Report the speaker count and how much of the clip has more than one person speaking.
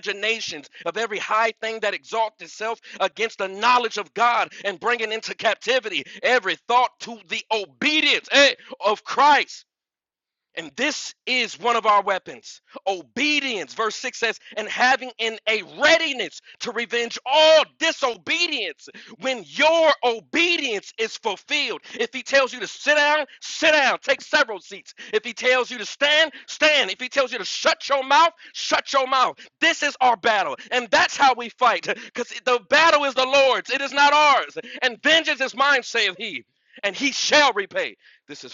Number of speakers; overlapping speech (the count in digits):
1, no overlap